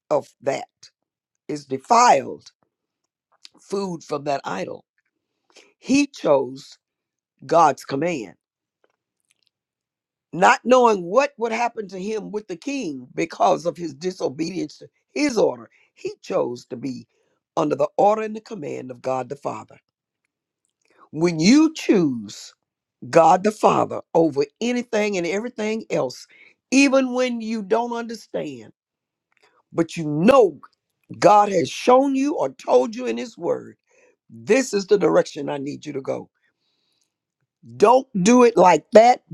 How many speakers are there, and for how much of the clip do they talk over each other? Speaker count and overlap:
one, no overlap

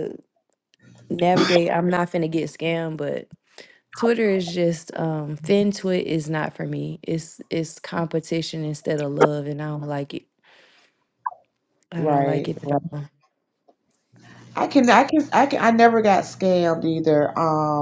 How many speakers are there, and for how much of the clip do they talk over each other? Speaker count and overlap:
two, about 5%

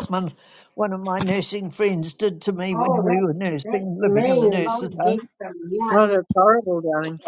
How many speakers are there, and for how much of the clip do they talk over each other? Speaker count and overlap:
three, about 31%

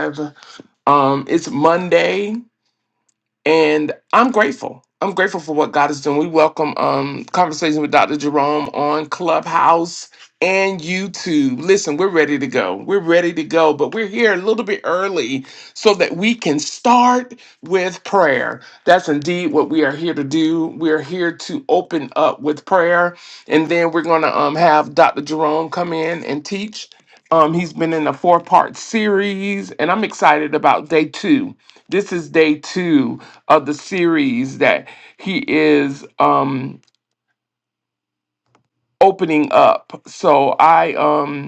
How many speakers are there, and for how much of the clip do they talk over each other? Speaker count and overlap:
one, no overlap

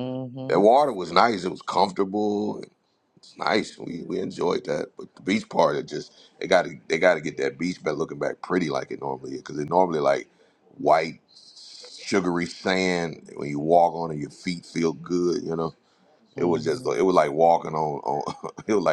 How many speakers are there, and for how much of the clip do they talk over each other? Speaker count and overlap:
two, about 3%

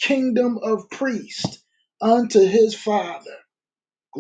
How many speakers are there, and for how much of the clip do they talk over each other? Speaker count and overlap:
one, no overlap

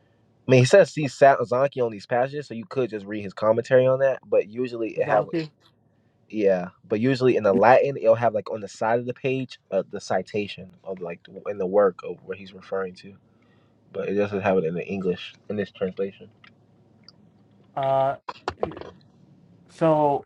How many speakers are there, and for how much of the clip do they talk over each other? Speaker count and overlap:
two, about 2%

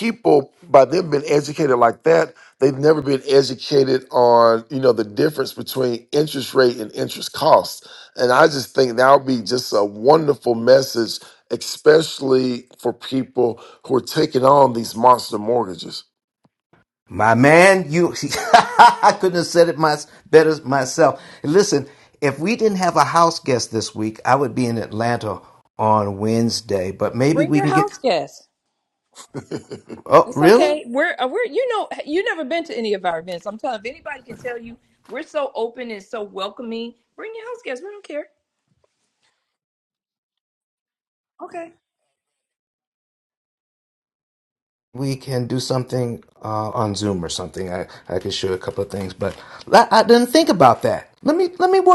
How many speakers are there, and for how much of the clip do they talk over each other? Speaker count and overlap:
three, about 2%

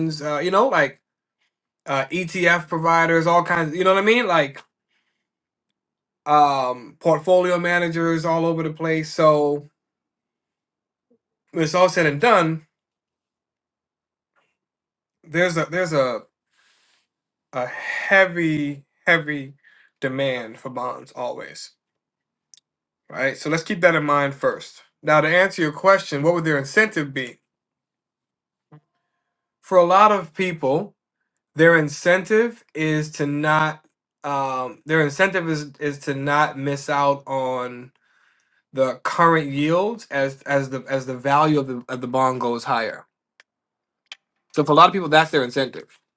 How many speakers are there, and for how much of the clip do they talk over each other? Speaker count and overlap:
one, no overlap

